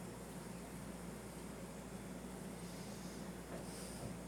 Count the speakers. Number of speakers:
zero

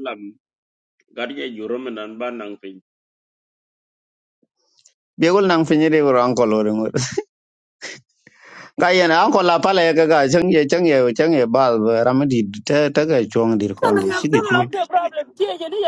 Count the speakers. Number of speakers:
three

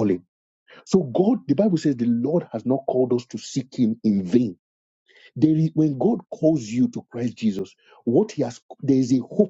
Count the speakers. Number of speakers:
one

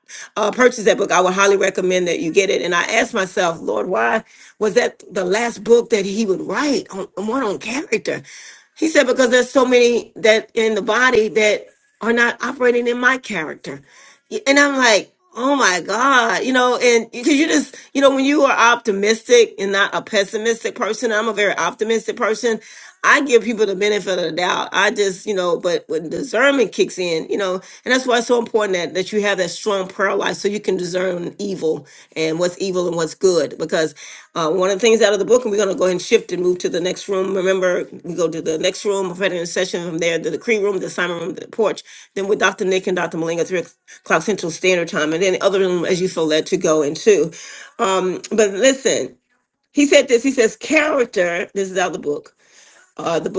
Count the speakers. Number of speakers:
one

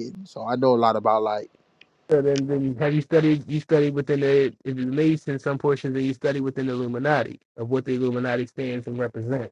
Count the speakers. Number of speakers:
two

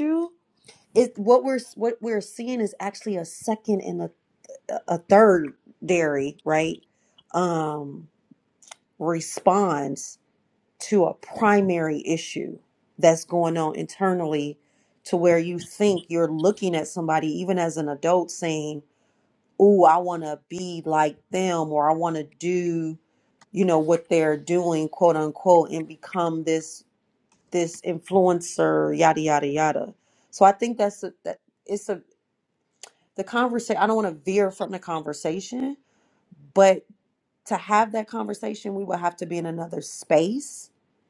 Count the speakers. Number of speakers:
one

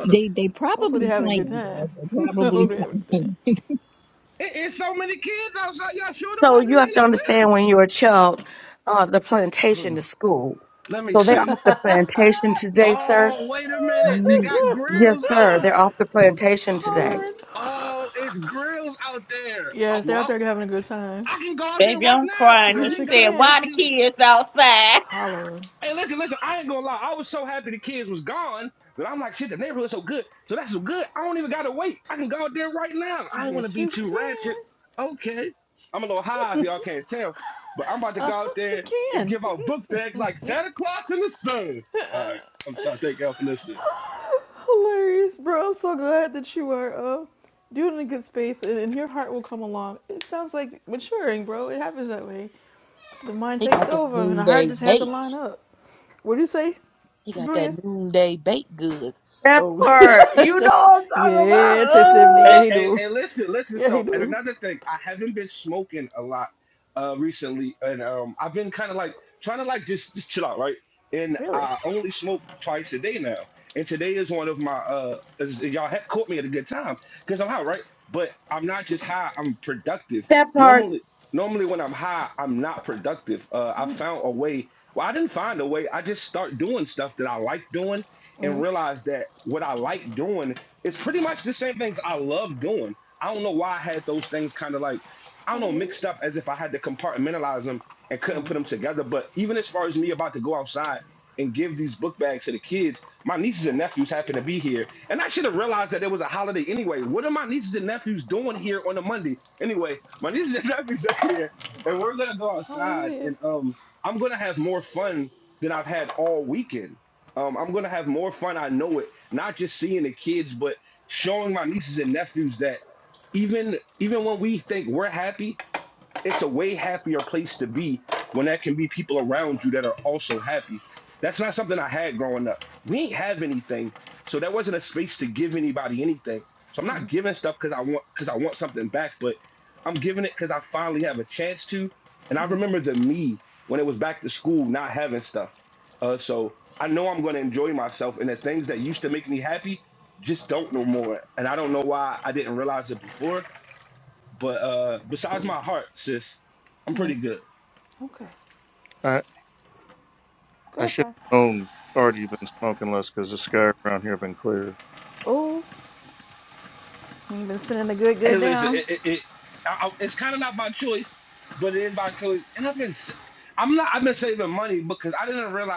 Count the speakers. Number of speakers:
seven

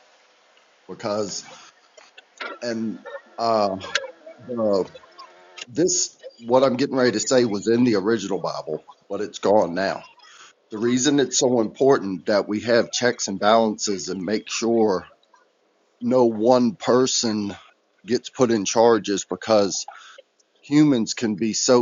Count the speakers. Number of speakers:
one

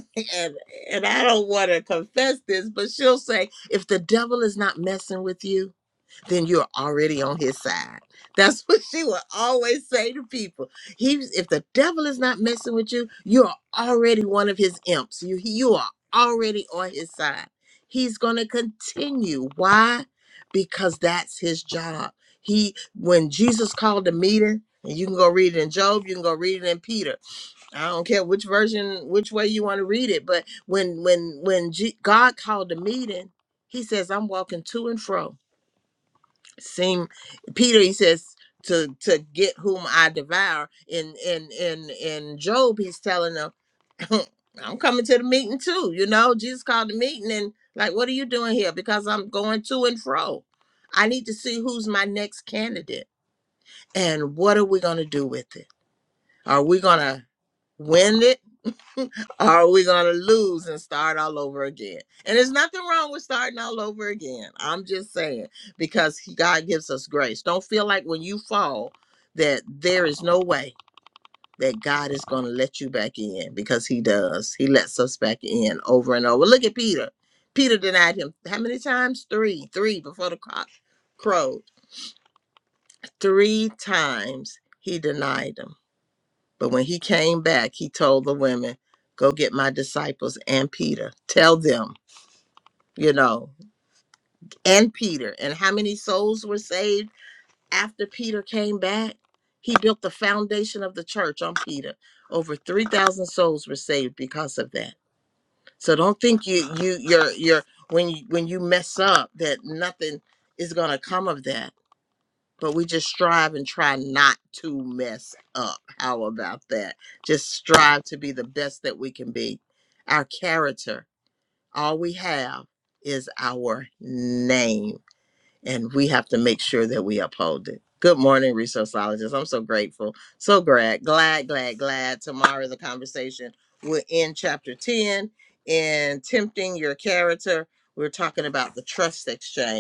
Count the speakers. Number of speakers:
one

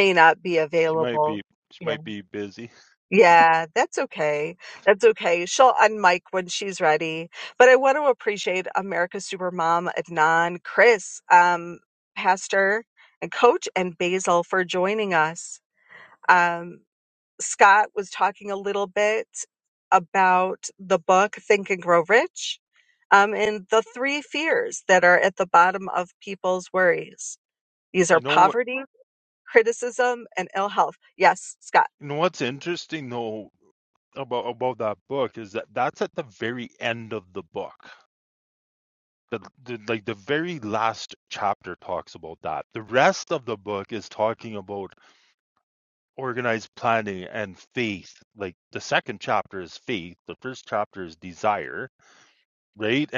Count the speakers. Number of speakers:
two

